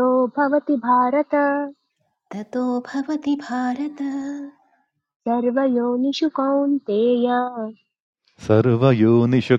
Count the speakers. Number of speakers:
3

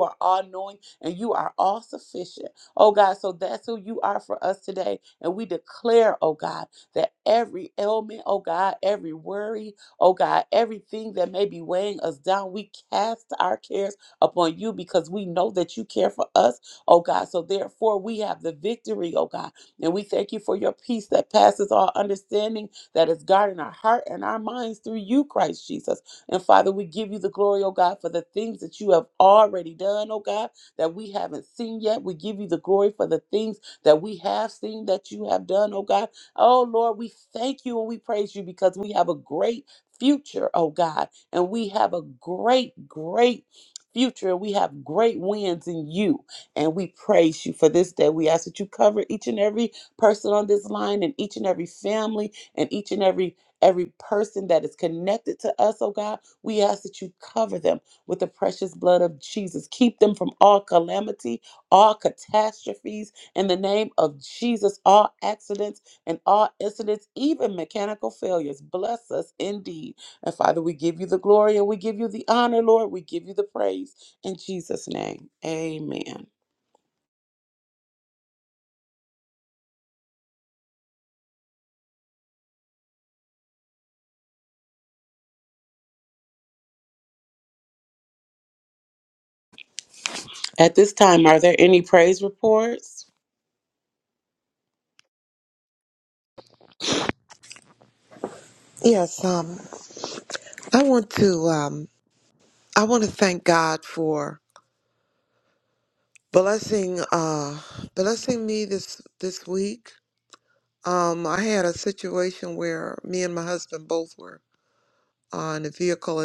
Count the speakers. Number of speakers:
2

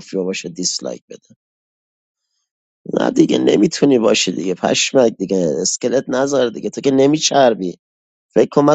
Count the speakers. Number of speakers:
1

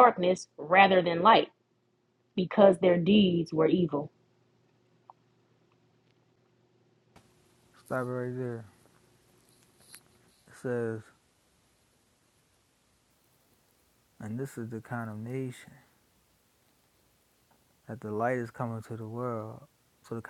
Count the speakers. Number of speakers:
2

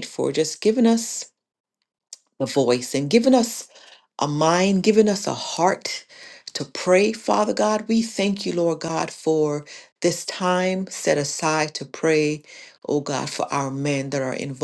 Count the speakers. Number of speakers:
1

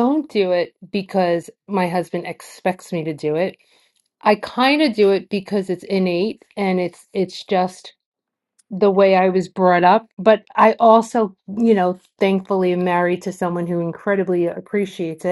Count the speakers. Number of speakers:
1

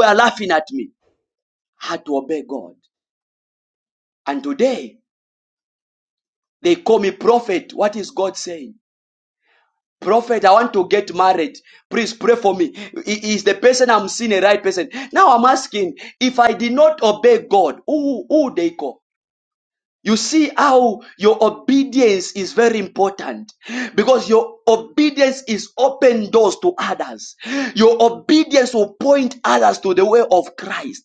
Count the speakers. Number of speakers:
1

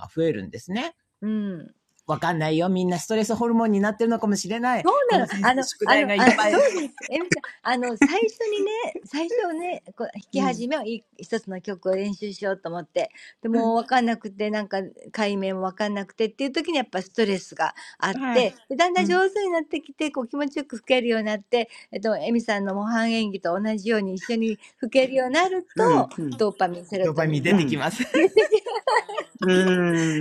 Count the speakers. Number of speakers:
3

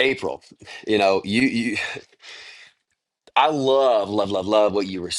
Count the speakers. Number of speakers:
1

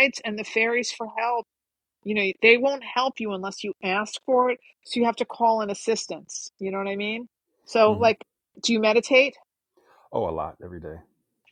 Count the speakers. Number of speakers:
2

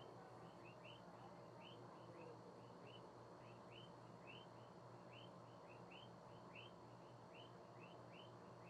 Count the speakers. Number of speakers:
0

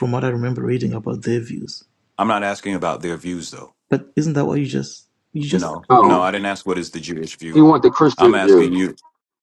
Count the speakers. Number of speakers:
3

